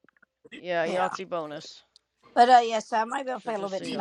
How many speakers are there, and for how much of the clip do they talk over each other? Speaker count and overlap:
2, about 20%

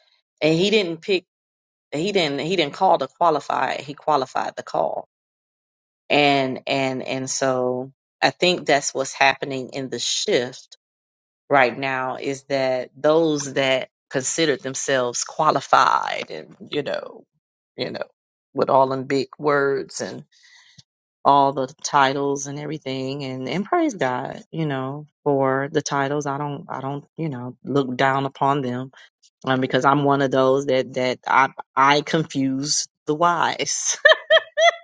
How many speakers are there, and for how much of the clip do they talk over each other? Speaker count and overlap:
1, no overlap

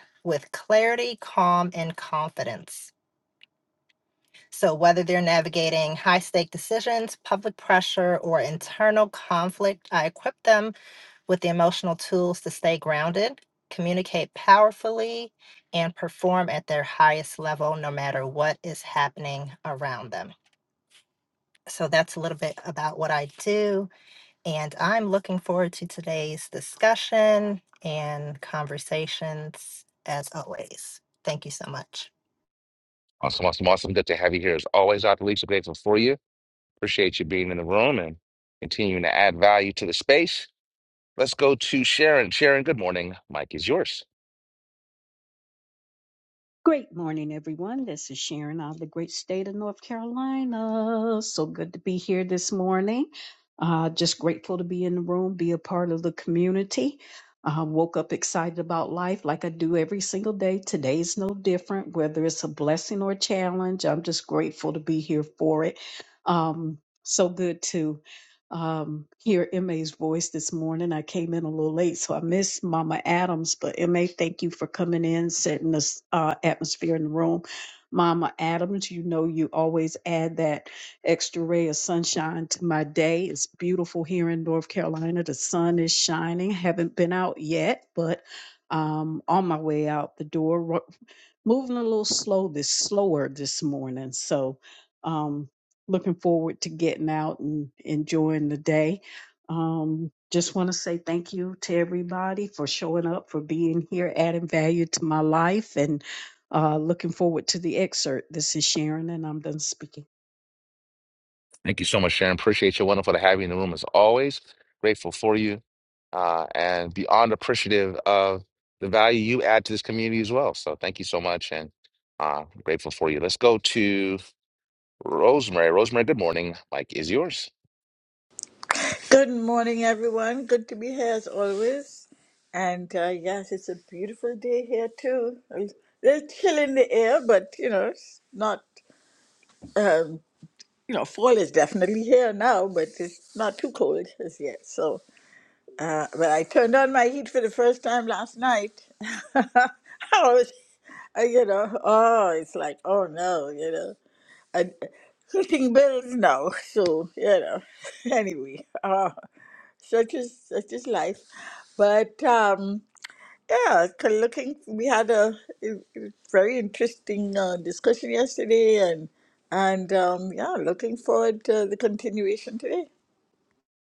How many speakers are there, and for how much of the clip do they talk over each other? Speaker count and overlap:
4, no overlap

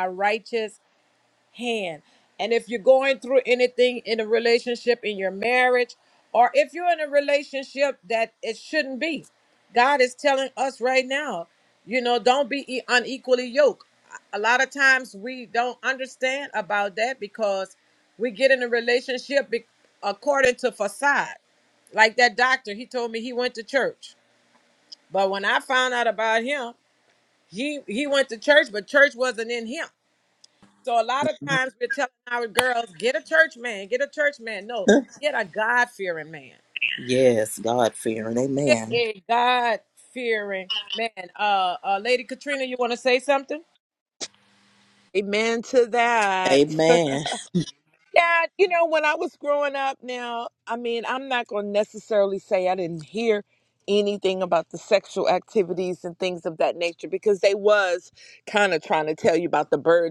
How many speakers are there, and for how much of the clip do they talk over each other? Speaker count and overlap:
3, about 1%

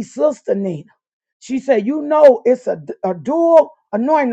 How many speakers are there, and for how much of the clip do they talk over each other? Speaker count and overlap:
1, no overlap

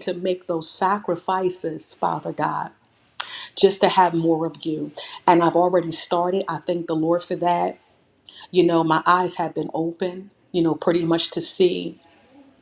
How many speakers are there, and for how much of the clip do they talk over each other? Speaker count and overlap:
1, no overlap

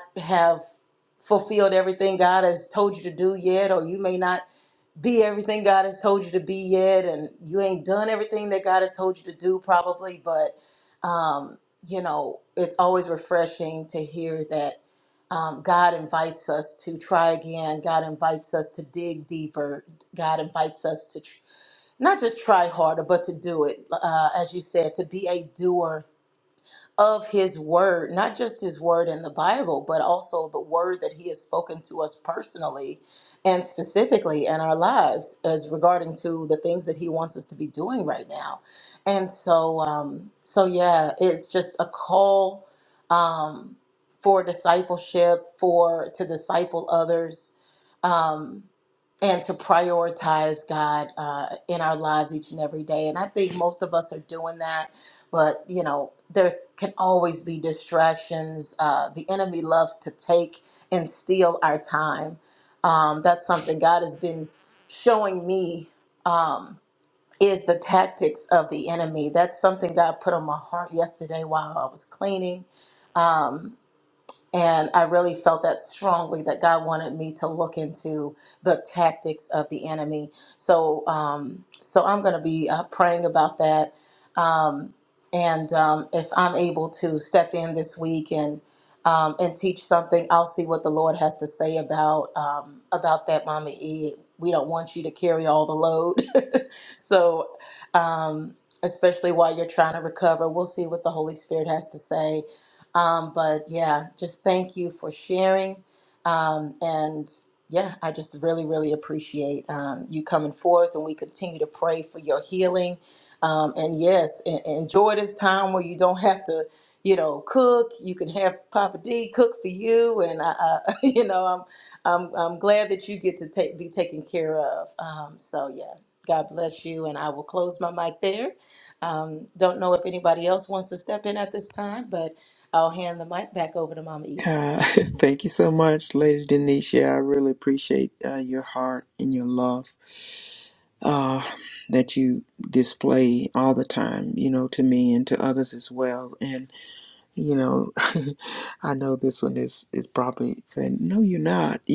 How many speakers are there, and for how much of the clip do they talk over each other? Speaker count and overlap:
2, under 1%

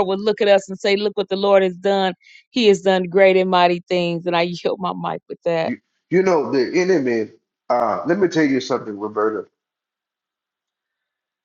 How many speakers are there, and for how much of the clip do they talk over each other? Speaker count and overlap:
2, under 1%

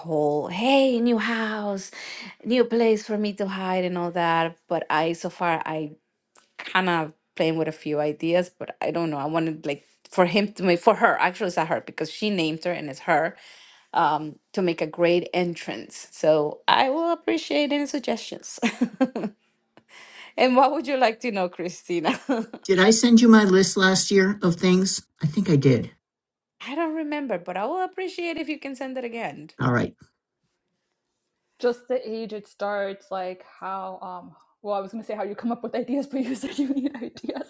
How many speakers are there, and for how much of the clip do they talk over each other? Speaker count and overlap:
3, no overlap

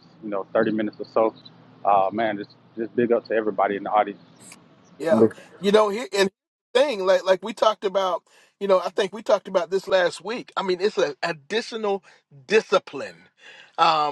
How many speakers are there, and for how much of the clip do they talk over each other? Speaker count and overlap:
2, no overlap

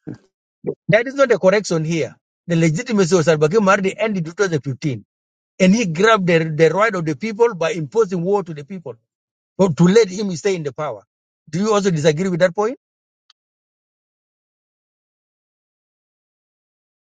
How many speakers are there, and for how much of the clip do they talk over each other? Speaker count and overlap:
1, no overlap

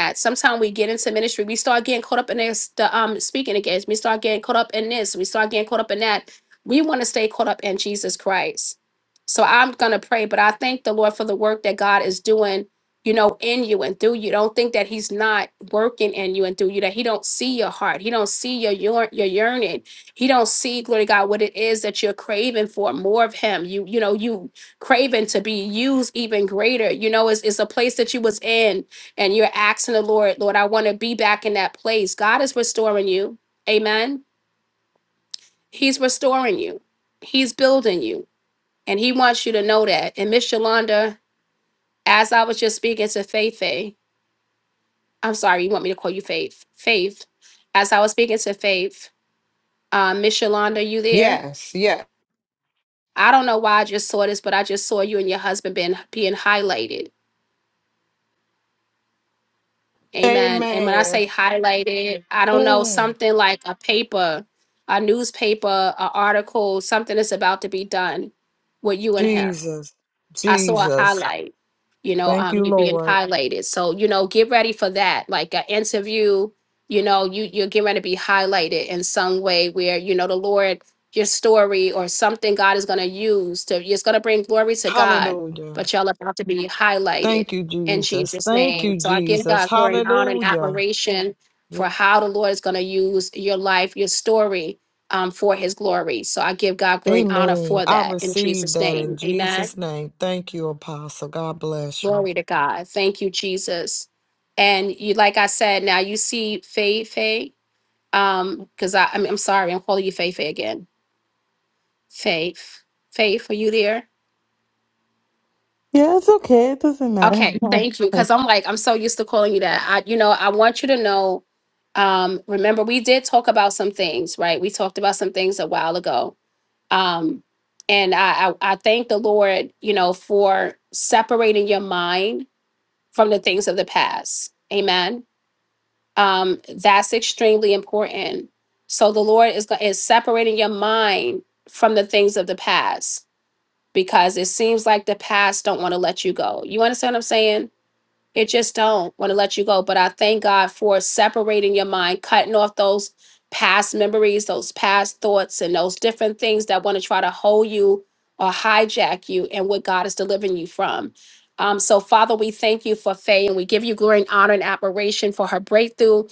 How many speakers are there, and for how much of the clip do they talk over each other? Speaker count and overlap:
3, about 6%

